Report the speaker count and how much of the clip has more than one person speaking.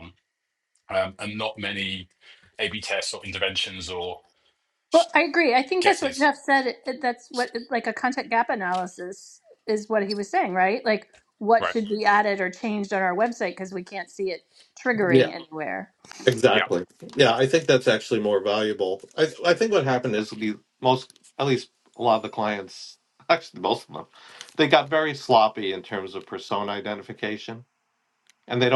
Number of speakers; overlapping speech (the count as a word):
three, about 4%